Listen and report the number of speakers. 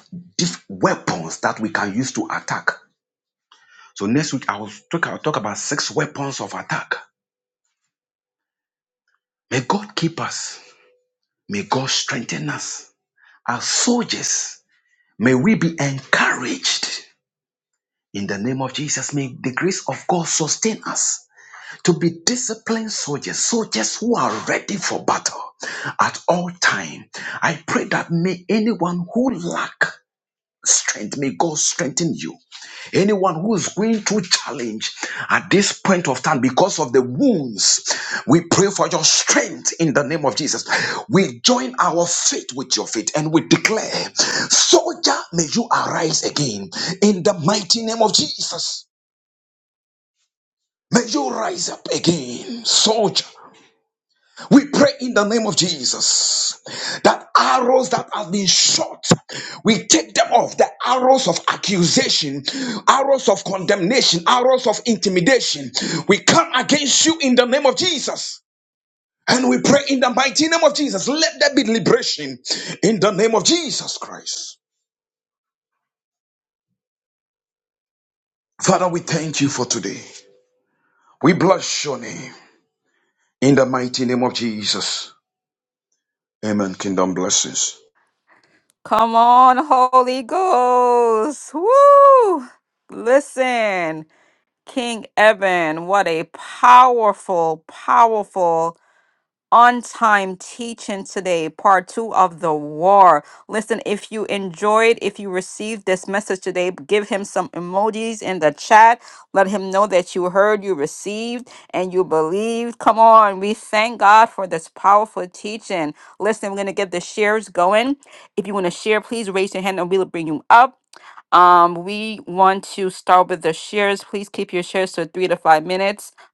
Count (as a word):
two